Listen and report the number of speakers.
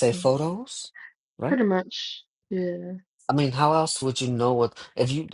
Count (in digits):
2